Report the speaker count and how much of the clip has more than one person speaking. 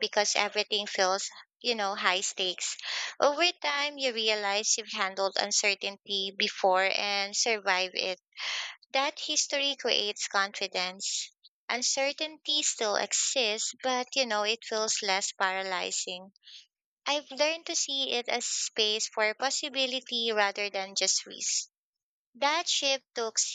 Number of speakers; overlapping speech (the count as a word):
one, no overlap